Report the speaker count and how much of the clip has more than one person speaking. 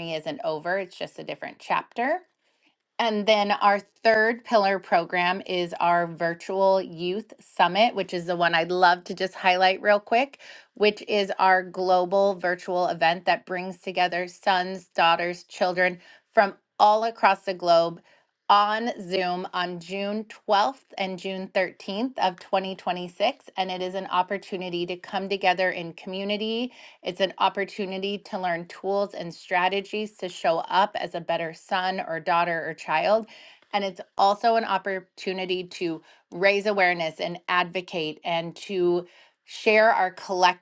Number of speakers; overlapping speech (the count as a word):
one, no overlap